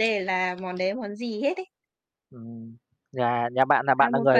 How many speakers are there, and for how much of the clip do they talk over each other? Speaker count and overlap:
two, about 10%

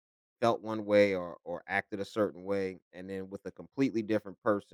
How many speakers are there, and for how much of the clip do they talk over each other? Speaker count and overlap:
one, no overlap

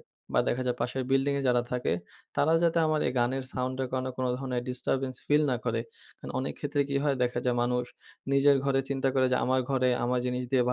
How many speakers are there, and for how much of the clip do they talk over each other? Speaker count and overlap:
one, no overlap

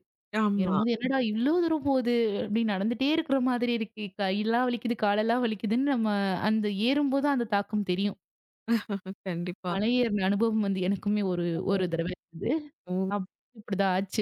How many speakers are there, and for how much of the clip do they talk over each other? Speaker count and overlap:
two, about 3%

